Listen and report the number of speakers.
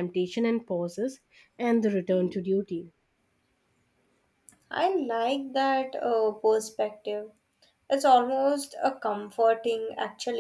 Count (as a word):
two